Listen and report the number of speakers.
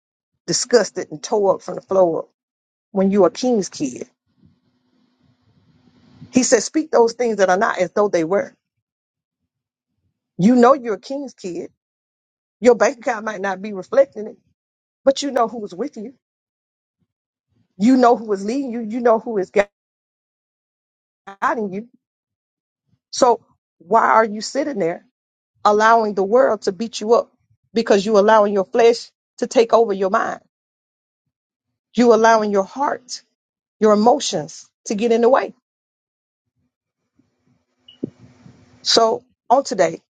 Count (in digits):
1